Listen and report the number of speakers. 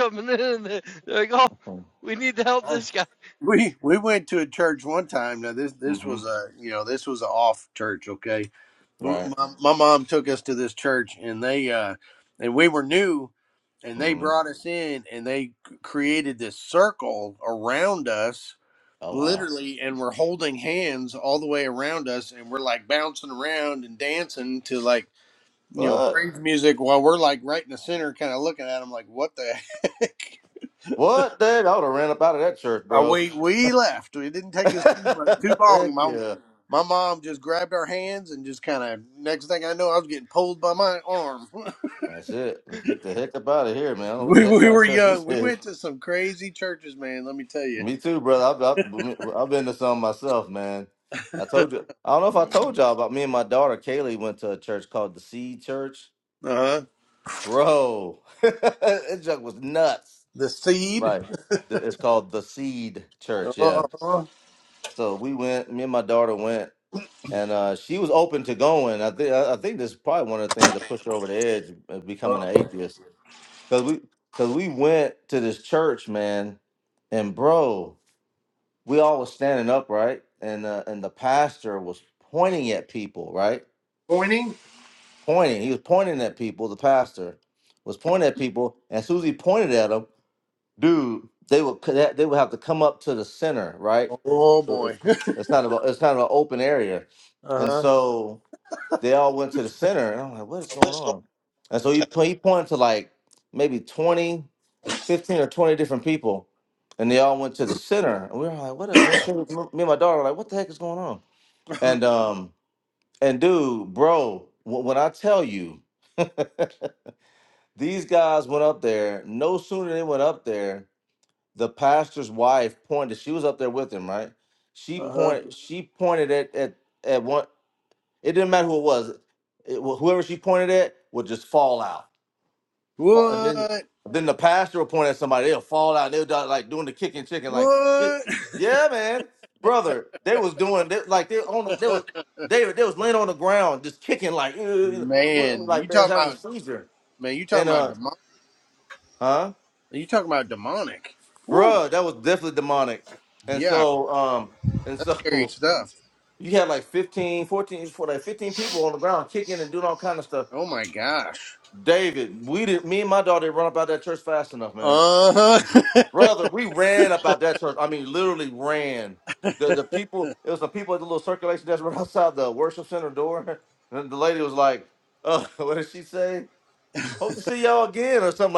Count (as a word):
three